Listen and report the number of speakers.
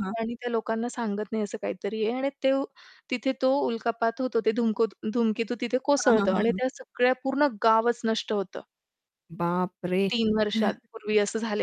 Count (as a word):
two